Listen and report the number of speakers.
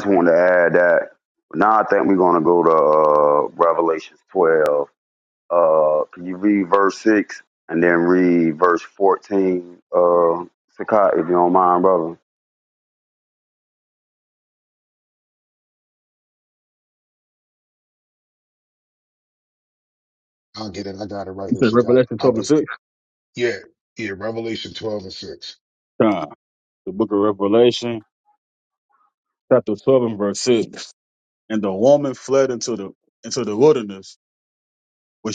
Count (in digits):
3